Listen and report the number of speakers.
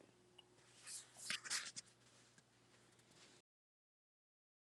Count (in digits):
0